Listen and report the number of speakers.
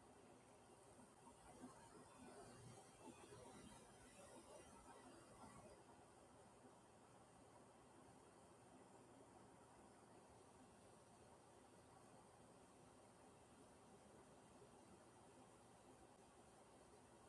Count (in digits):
0